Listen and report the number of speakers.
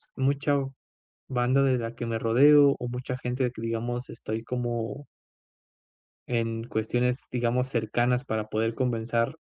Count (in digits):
1